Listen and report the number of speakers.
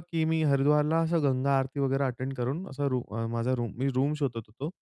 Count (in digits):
1